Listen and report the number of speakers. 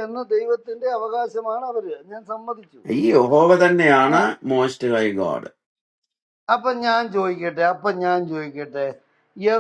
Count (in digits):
2